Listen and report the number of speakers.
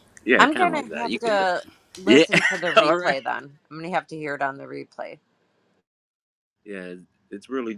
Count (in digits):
2